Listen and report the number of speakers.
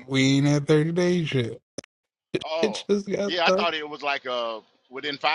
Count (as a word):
two